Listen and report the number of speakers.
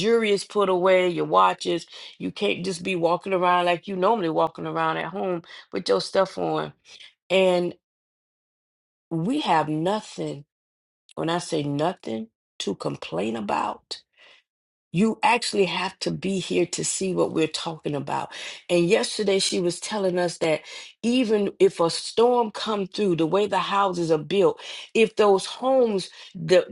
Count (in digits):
1